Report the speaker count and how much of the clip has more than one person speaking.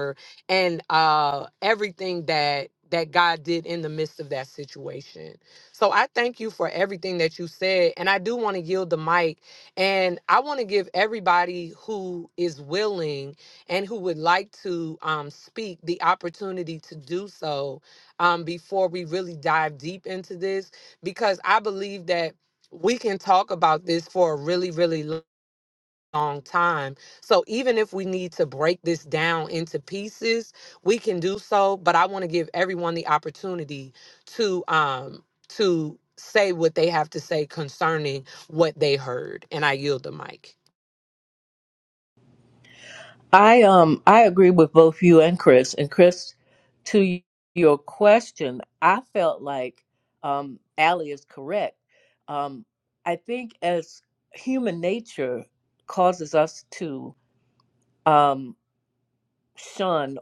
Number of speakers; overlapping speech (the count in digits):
2, no overlap